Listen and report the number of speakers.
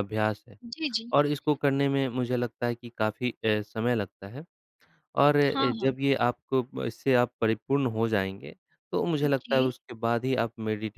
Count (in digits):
2